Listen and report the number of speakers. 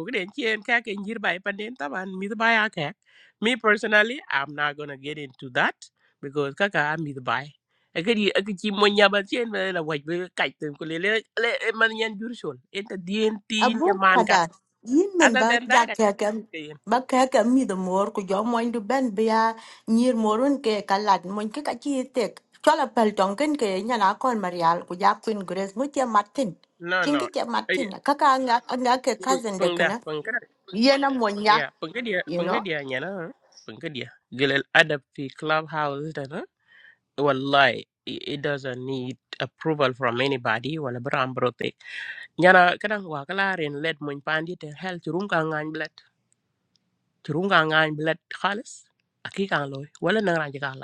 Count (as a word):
two